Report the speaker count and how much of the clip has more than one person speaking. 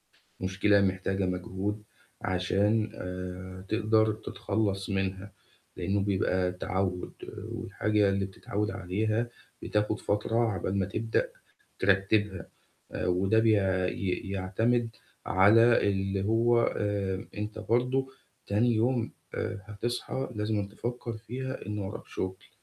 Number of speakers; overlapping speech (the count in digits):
1, no overlap